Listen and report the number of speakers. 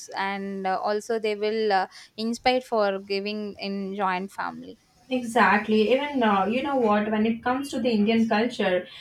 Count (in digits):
2